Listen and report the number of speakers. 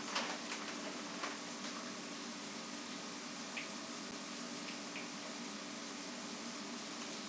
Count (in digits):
0